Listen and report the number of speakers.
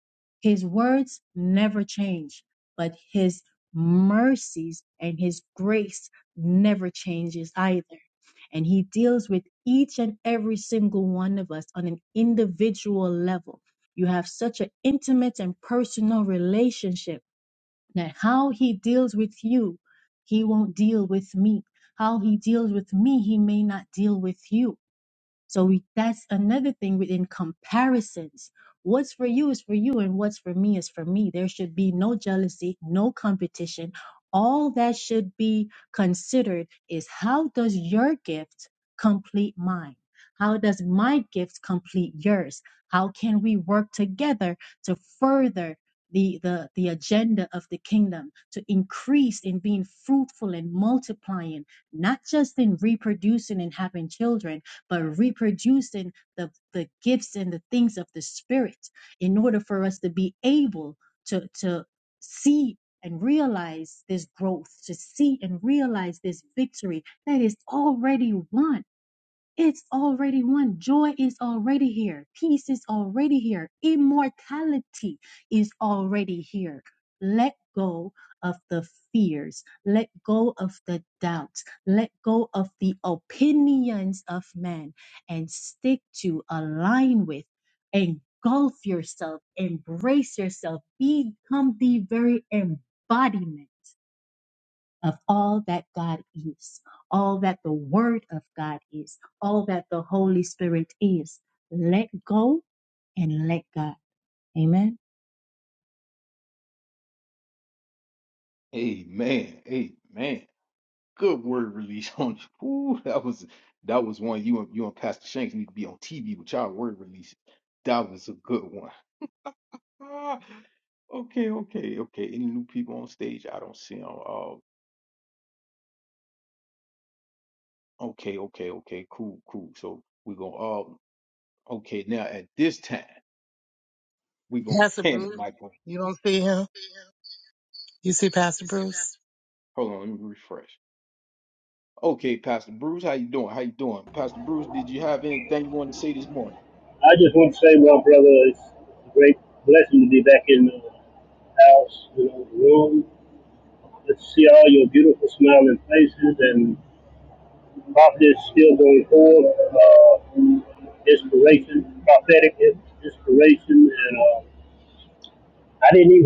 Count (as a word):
four